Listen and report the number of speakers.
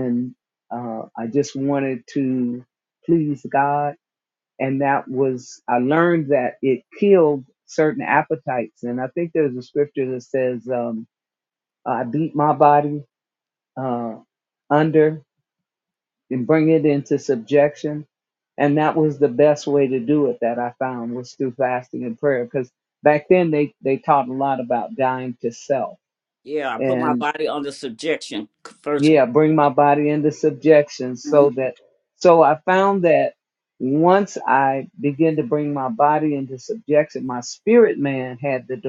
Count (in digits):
2